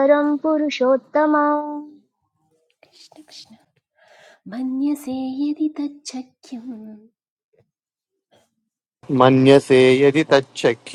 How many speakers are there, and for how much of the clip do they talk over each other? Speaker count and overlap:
3, no overlap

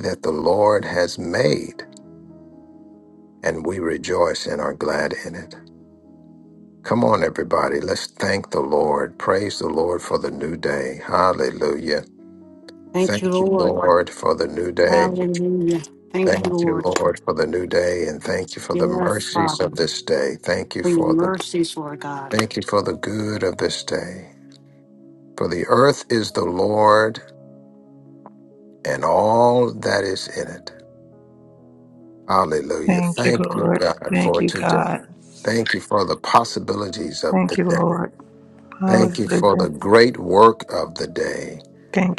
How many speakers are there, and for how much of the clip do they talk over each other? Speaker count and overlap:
3, about 16%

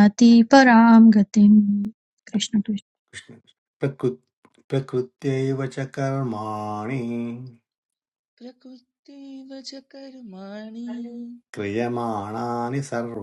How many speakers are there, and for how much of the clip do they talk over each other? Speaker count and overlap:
3, no overlap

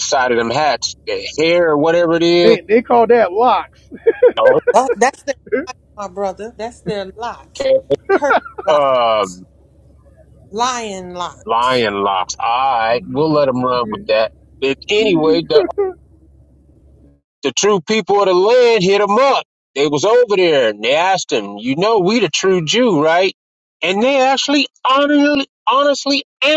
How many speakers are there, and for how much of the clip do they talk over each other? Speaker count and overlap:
3, about 1%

